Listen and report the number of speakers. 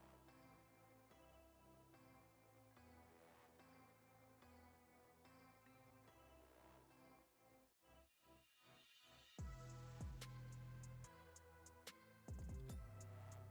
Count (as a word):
zero